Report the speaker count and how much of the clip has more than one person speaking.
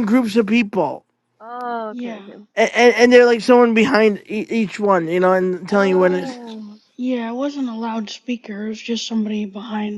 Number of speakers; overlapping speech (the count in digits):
3, about 11%